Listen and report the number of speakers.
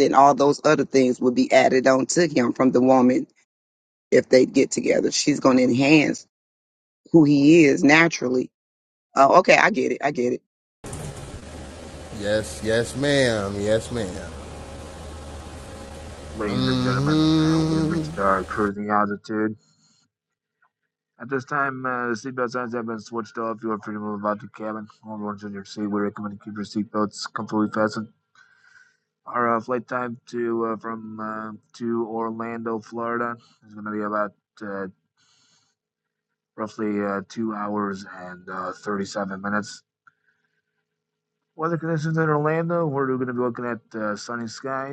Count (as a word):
three